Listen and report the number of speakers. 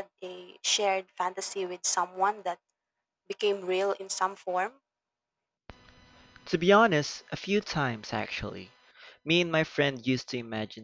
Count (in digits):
2